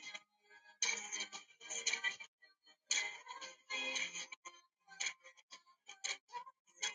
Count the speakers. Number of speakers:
zero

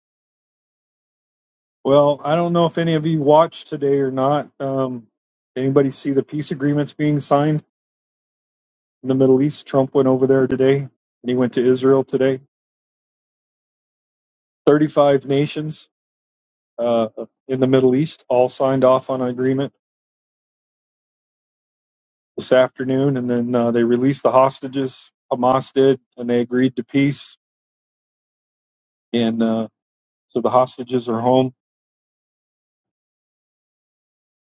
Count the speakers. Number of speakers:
one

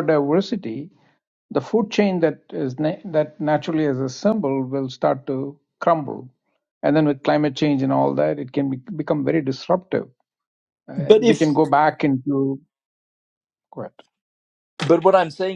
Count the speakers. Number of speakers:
two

